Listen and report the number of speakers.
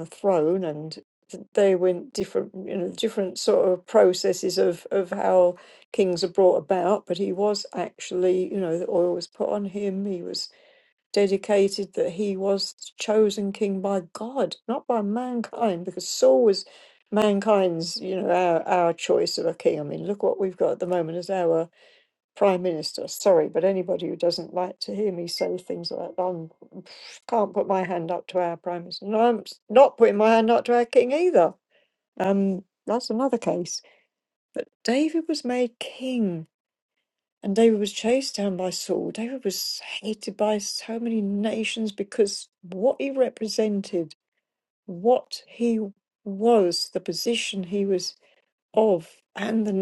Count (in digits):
1